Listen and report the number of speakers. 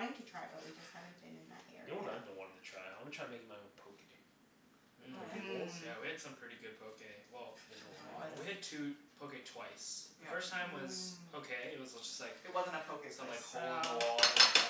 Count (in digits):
4